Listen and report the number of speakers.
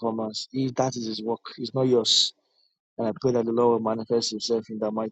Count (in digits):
1